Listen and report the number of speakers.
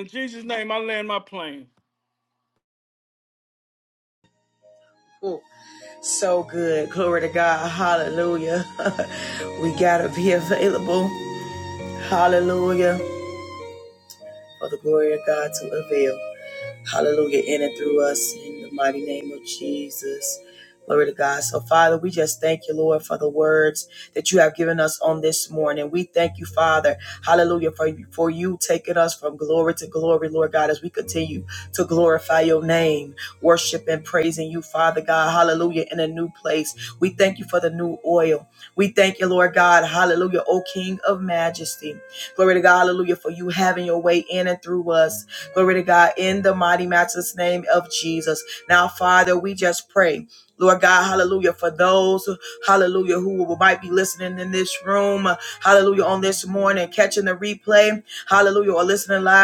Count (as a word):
two